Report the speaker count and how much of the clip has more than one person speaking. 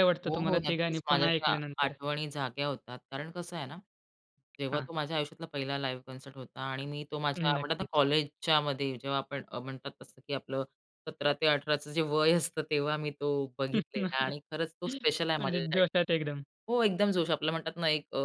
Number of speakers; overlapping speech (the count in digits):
2, about 15%